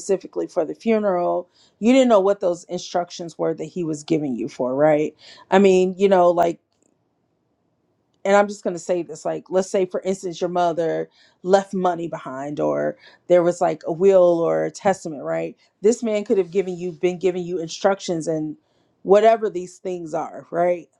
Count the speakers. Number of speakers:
one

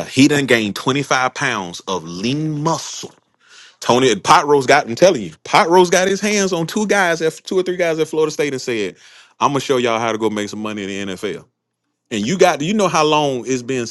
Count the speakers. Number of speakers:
one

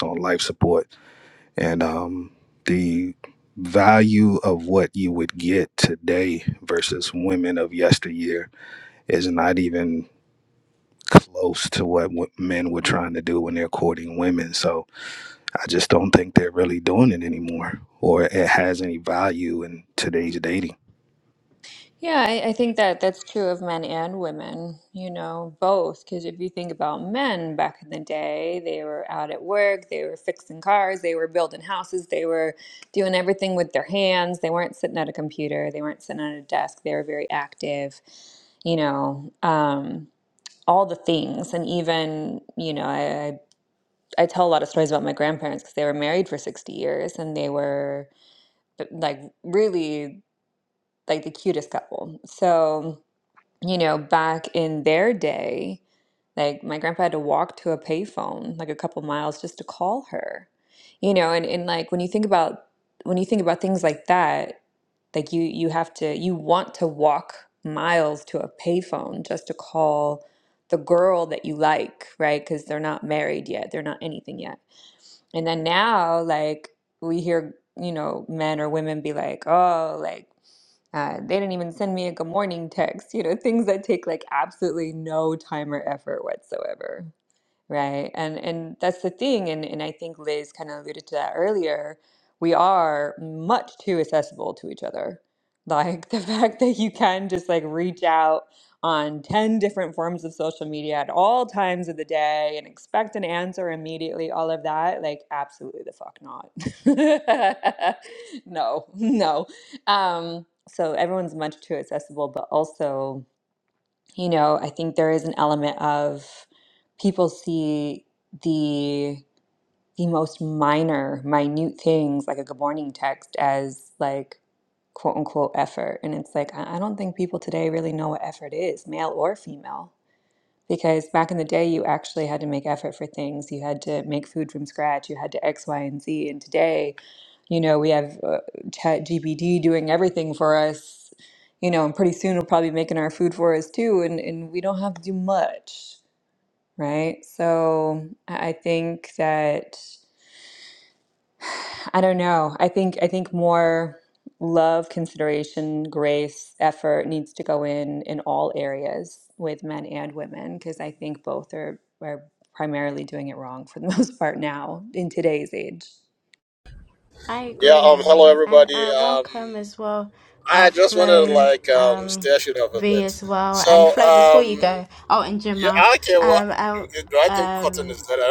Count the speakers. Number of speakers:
four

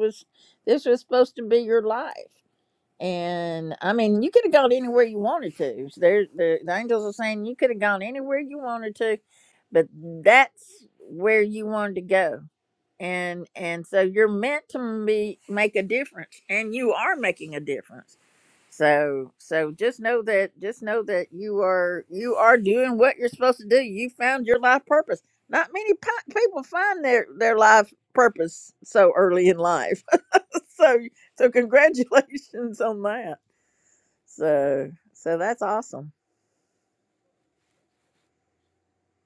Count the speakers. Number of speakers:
one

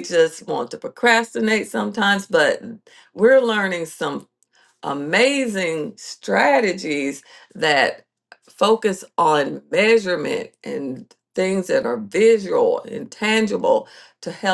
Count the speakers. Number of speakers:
one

